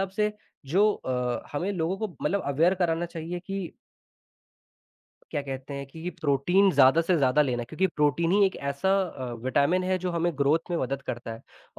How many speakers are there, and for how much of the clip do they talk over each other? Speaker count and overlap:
one, no overlap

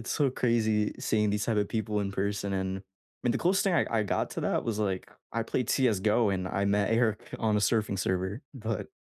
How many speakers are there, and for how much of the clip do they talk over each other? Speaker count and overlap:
one, no overlap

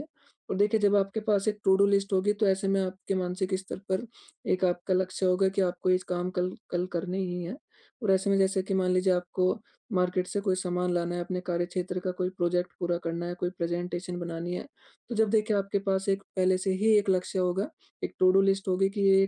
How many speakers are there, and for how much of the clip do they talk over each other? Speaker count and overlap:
one, no overlap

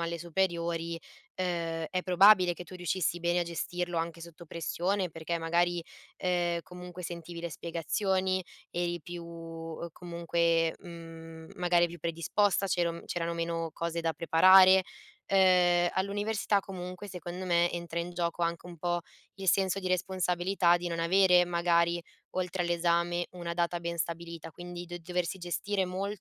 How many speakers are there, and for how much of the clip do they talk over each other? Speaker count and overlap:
one, no overlap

